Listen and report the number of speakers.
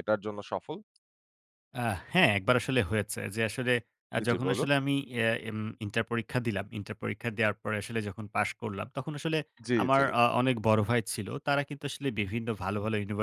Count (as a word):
two